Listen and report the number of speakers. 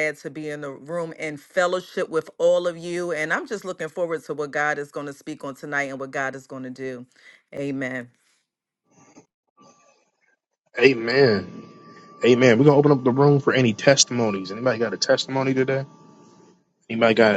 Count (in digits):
2